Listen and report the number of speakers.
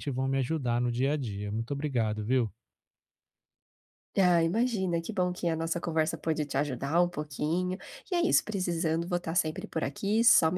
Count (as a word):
two